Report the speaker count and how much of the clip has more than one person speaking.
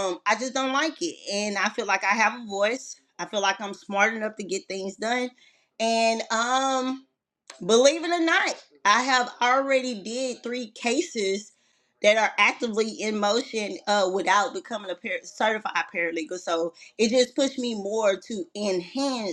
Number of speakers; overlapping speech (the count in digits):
1, no overlap